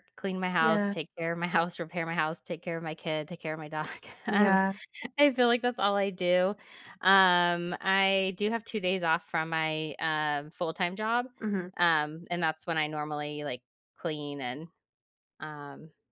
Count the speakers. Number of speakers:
2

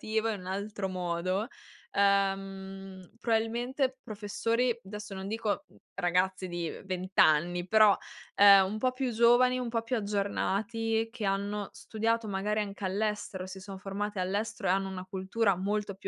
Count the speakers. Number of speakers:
1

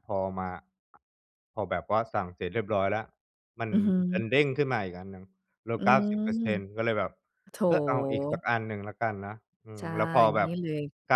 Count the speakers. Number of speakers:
2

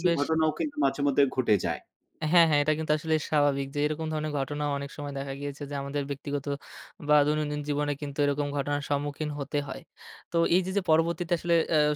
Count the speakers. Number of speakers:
2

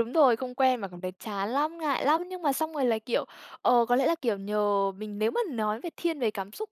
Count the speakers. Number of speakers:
1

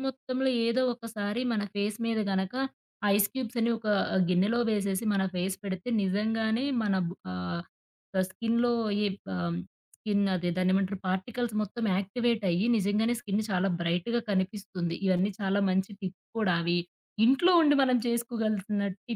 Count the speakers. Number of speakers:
1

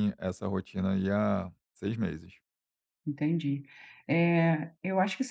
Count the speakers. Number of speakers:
2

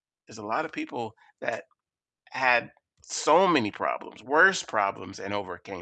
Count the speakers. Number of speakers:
1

